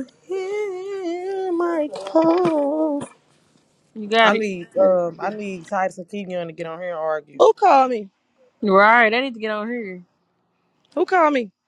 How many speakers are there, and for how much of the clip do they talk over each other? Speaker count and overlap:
3, about 6%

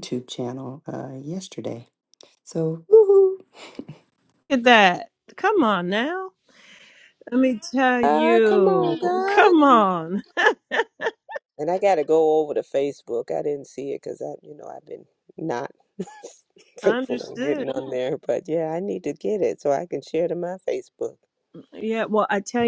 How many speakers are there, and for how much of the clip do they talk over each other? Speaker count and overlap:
3, about 10%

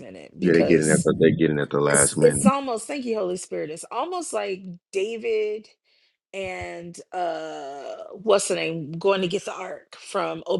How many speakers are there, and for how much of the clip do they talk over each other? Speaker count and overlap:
2, about 11%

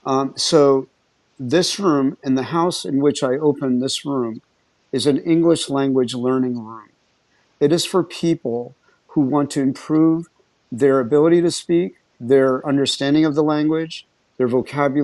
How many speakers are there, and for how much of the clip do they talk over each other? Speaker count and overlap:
1, no overlap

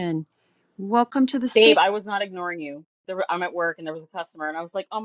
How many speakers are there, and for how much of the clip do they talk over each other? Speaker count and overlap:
2, about 4%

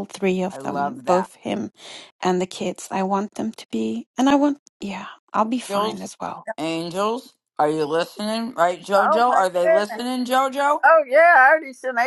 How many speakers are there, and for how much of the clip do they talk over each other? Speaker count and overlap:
3, about 17%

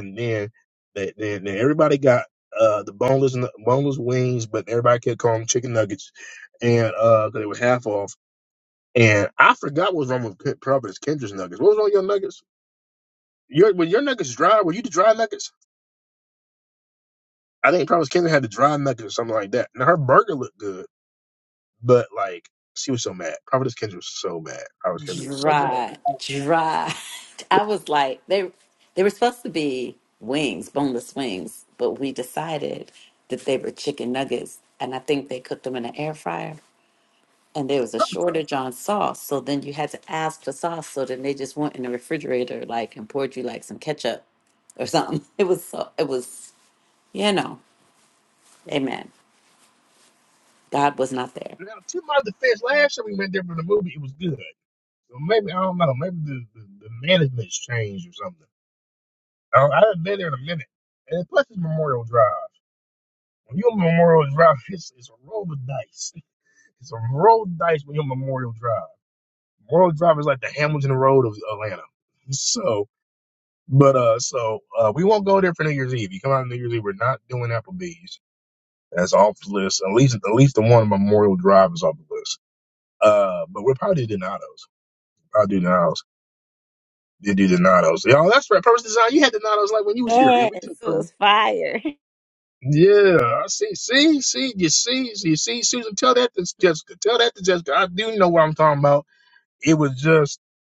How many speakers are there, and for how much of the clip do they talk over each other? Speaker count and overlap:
3, about 2%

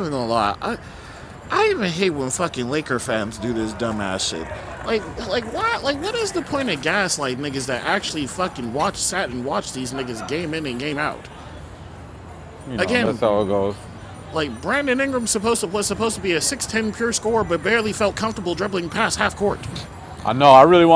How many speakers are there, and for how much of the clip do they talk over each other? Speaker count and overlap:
2, about 3%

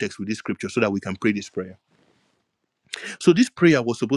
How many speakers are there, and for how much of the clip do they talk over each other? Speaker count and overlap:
1, no overlap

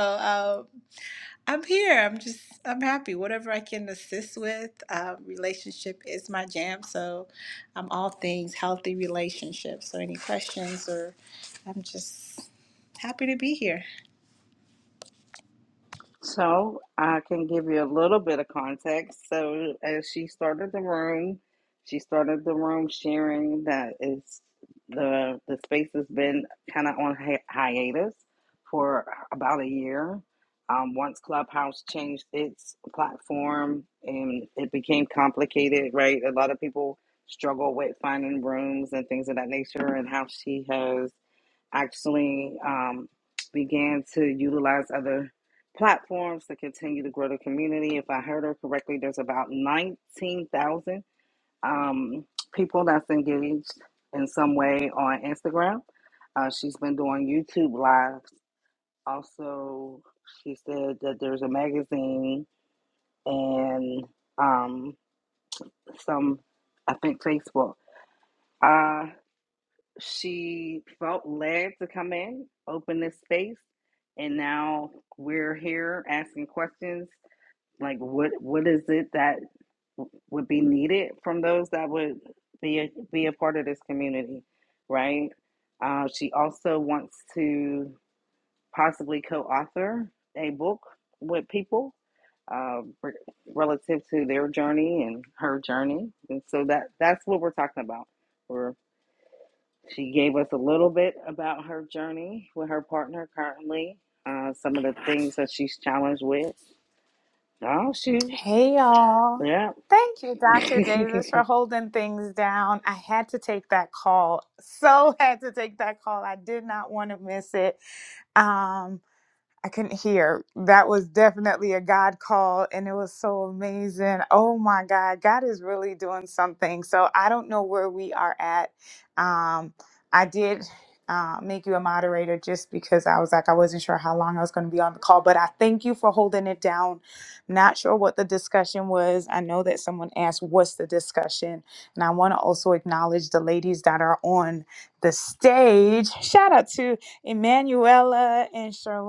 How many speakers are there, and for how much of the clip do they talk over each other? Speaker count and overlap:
3, under 1%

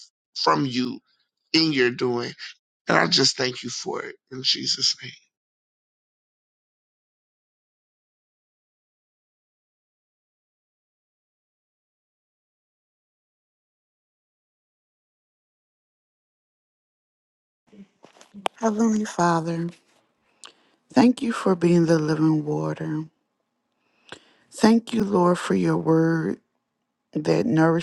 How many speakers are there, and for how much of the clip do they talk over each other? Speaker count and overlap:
2, no overlap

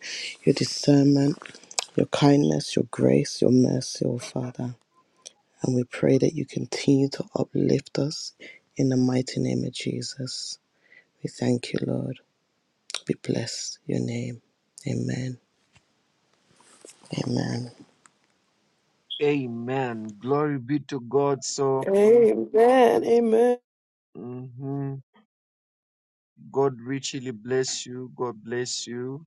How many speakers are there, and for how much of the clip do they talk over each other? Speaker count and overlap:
3, under 1%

